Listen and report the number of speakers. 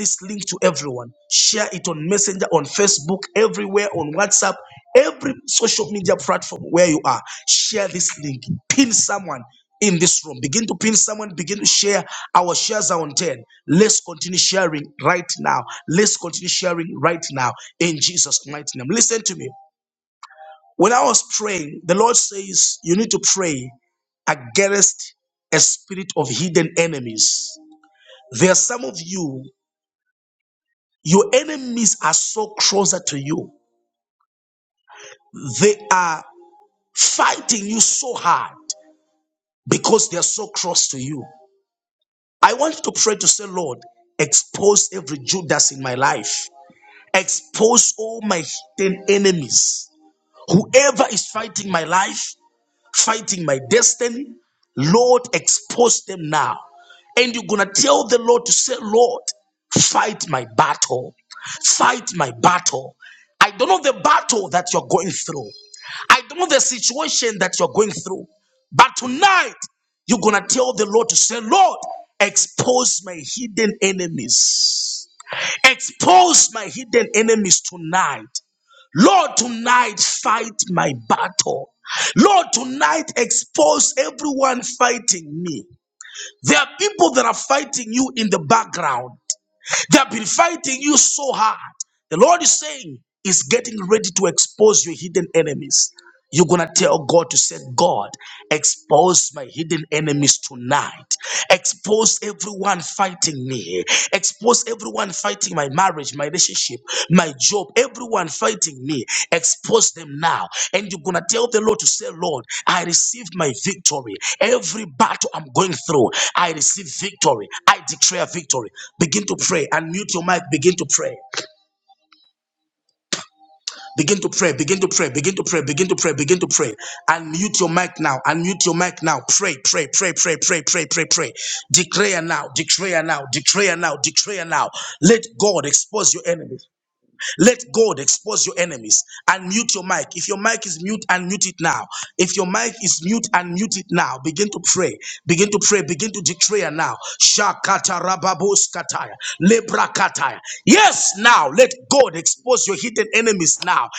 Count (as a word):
one